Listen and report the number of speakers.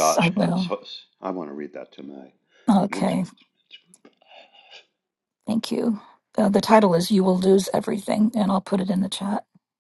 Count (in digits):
2